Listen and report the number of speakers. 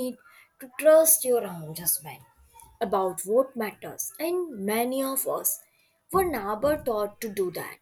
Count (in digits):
1